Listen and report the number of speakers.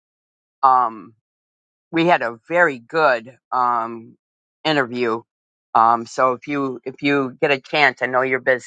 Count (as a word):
one